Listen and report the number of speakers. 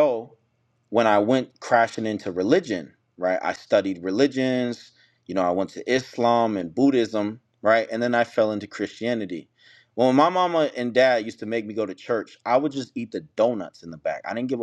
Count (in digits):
1